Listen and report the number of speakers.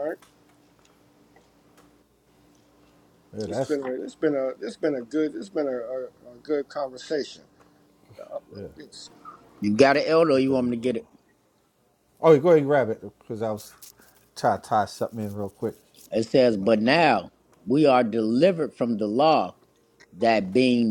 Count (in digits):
3